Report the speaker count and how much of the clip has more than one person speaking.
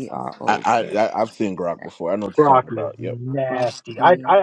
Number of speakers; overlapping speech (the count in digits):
3, about 47%